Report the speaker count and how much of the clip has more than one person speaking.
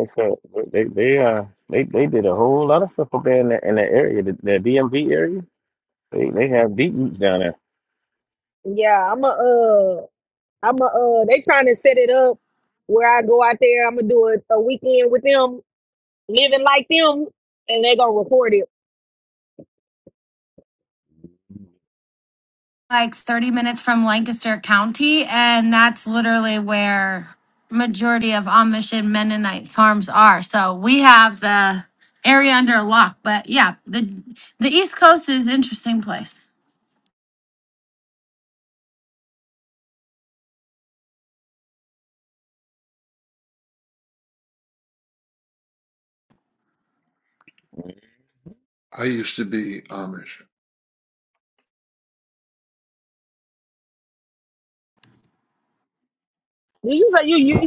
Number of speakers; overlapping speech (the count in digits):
4, no overlap